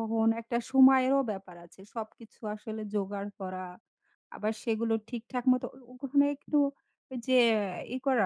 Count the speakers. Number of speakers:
one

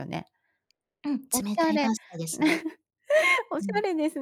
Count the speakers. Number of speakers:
two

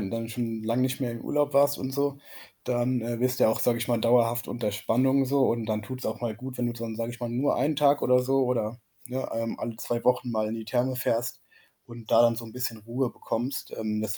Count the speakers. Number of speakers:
one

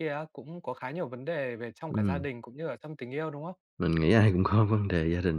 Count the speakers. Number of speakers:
two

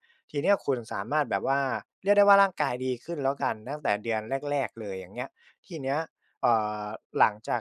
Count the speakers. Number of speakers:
one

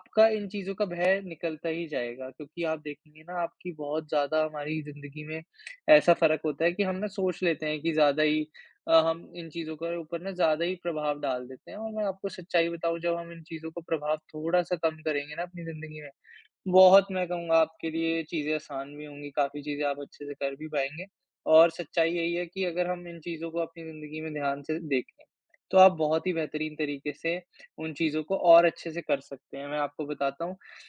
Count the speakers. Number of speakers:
one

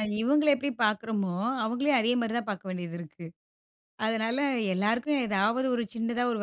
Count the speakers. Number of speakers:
one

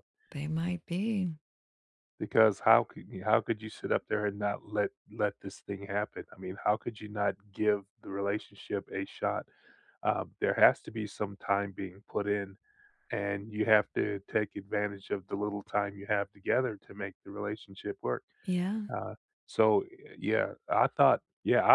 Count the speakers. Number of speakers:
two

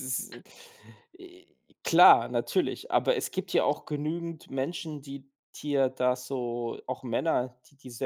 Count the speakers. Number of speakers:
one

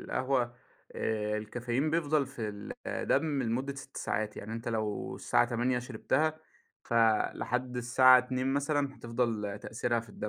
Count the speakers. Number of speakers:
one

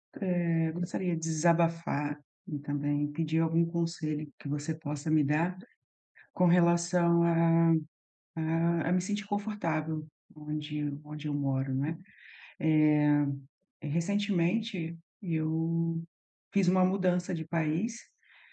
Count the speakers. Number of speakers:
one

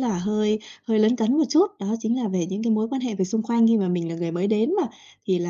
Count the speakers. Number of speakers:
one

